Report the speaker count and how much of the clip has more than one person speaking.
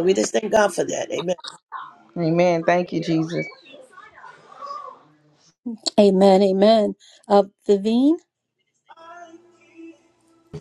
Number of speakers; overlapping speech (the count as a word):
three, no overlap